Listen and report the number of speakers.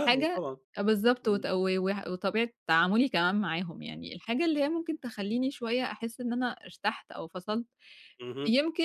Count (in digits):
2